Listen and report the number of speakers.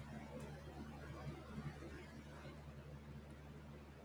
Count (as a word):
zero